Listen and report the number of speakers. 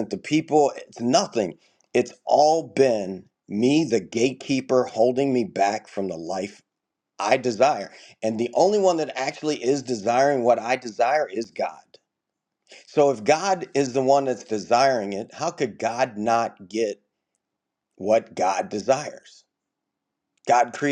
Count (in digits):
1